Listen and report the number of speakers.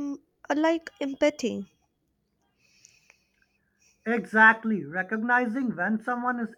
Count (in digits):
2